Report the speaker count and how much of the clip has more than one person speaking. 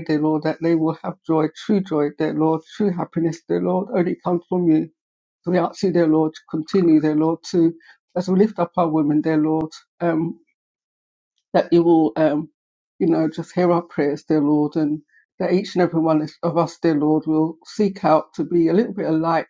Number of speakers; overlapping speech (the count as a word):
one, no overlap